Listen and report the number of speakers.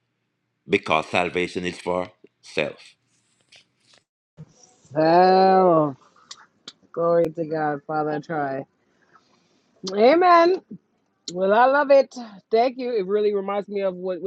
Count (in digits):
2